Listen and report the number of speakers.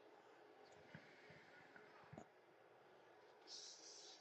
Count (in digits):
0